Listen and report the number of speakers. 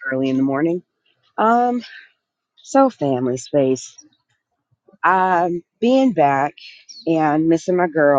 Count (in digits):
1